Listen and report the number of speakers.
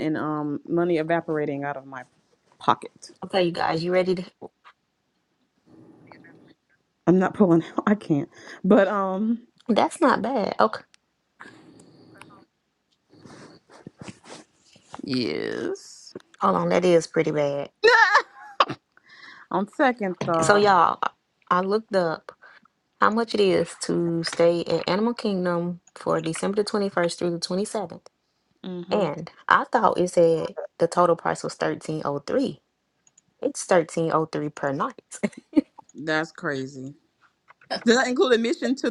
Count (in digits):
2